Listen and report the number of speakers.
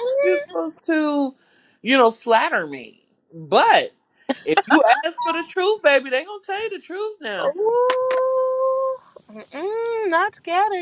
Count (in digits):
2